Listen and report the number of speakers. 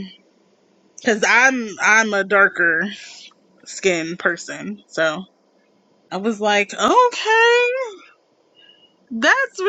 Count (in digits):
1